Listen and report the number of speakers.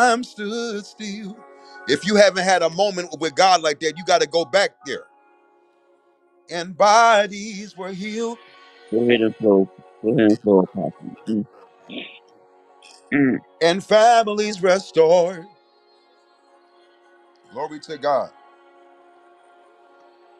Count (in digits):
2